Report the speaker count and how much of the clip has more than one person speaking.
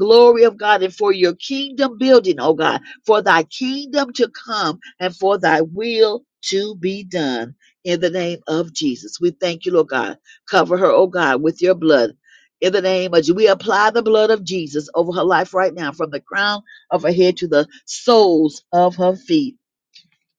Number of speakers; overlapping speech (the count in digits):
1, no overlap